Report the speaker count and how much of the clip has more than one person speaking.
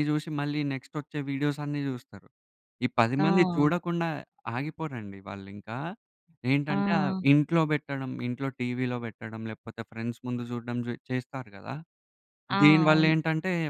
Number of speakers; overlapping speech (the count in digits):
2, about 13%